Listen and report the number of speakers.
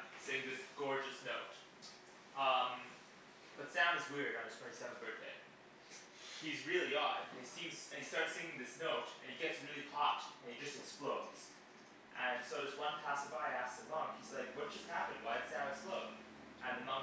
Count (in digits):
1